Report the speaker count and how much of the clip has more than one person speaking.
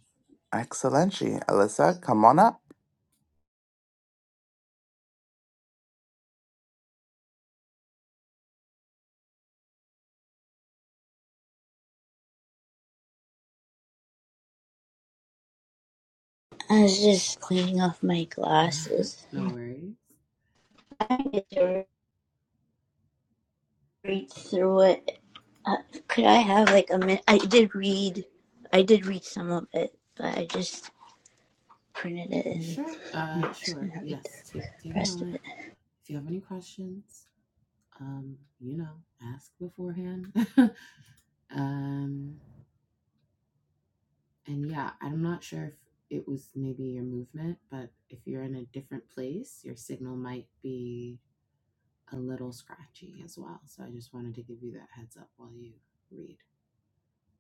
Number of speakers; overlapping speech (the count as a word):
three, about 3%